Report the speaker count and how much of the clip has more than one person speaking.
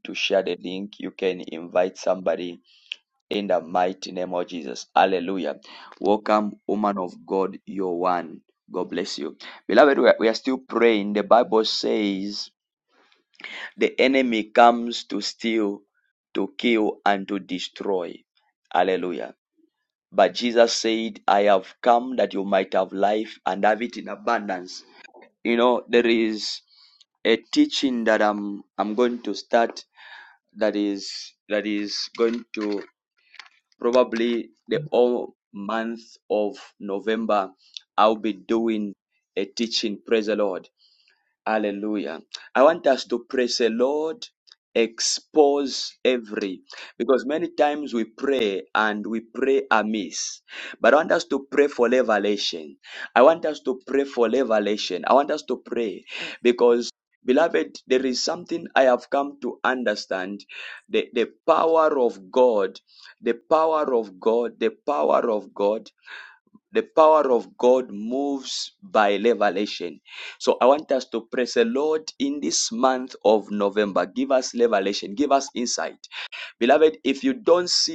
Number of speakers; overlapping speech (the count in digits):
1, no overlap